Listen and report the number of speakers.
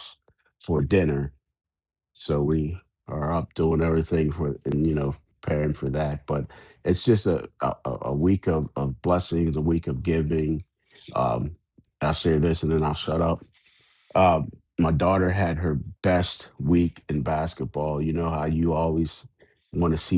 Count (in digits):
1